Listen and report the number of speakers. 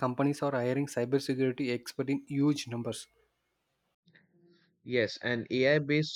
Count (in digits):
2